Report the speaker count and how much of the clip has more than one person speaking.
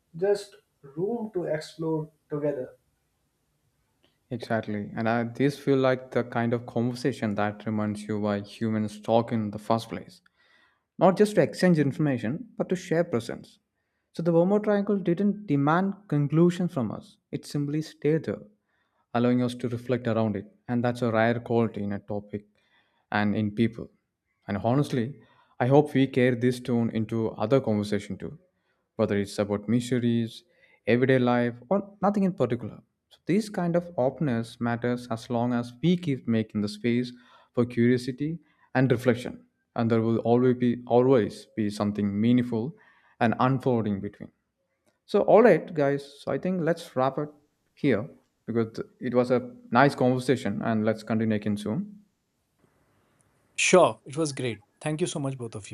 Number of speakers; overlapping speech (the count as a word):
three, no overlap